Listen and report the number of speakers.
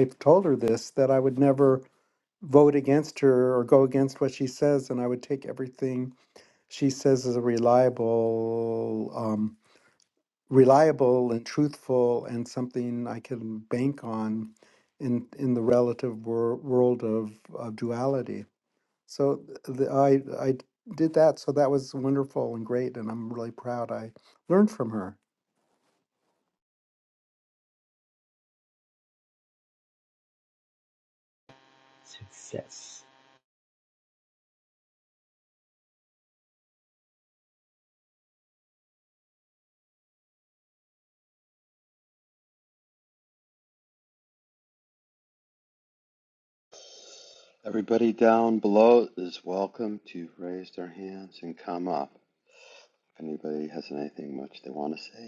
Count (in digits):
3